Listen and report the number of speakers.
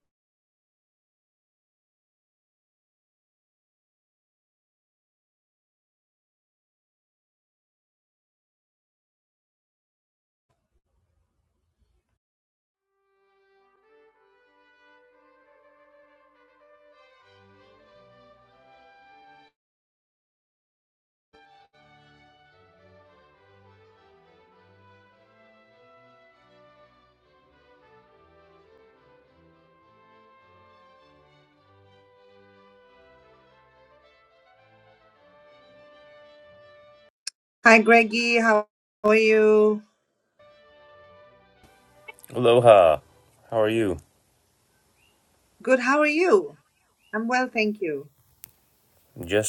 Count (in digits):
2